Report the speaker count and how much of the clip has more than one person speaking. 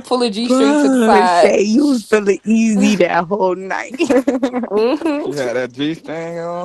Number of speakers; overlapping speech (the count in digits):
3, about 21%